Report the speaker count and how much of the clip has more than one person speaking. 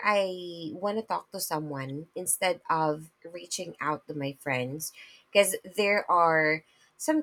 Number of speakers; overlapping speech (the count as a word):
one, no overlap